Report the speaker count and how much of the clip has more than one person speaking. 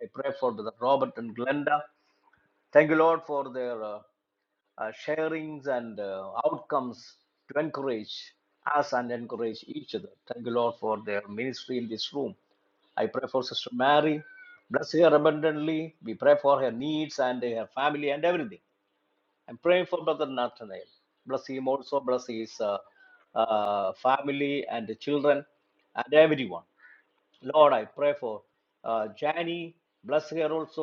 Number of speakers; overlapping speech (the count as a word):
one, no overlap